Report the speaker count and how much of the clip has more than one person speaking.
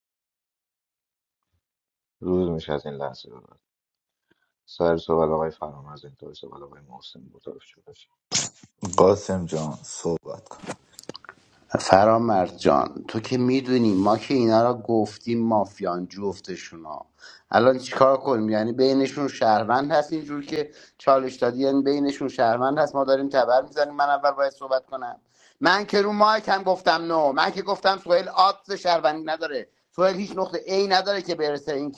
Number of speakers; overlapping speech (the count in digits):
3, no overlap